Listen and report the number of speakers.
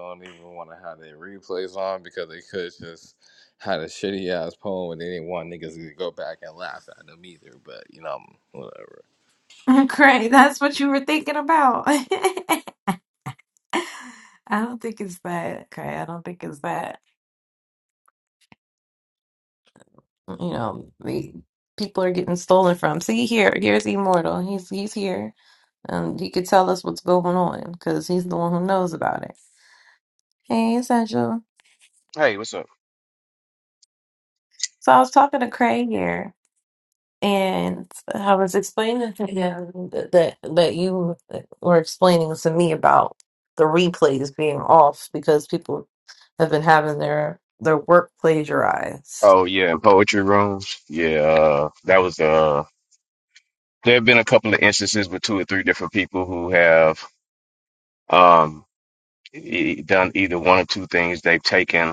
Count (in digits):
3